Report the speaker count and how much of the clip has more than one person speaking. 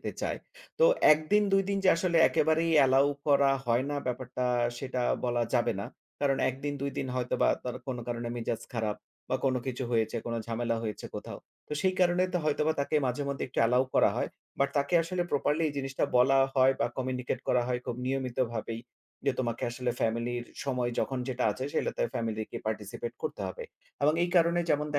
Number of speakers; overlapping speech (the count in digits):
1, no overlap